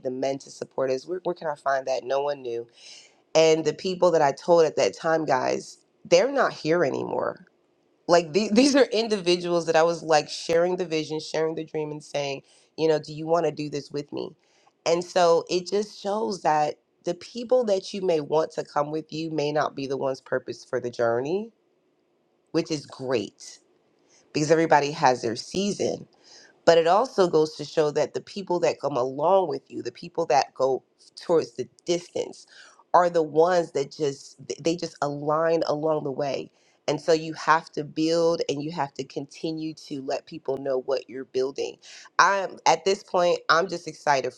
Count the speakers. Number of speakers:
one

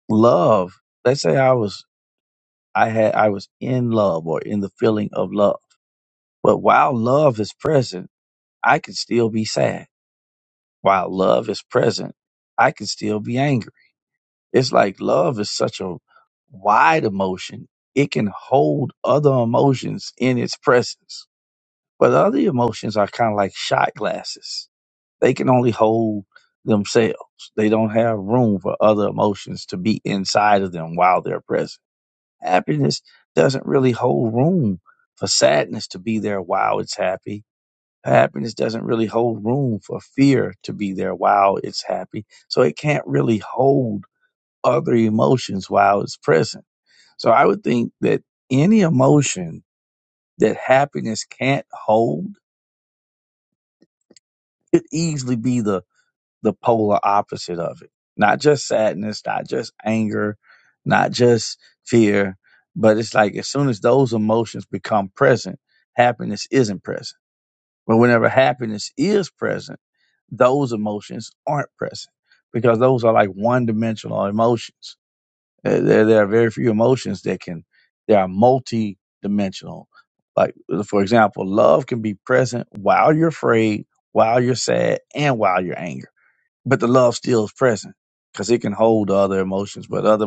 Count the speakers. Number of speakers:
one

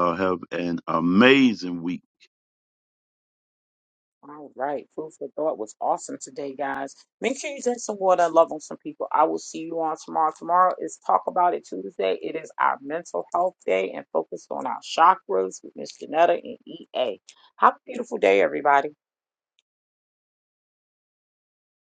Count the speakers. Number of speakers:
two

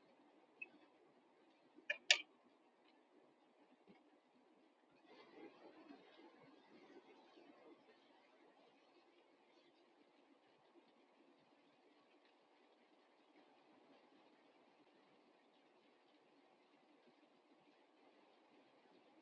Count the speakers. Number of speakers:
zero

